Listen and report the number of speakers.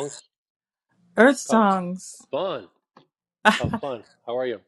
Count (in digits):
2